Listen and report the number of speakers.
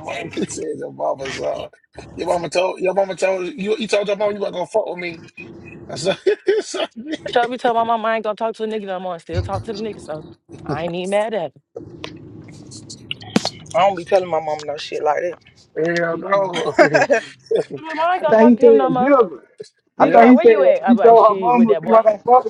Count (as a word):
four